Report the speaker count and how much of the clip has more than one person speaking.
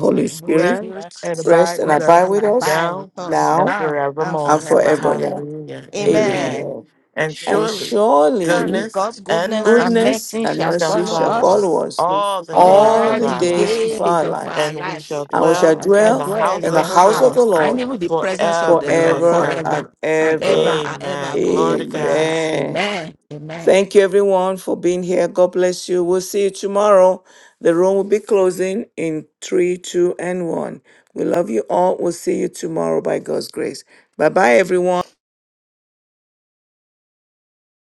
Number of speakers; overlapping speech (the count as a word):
three, about 47%